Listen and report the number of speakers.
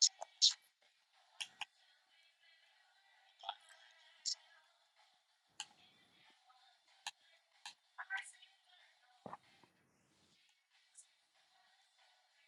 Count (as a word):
zero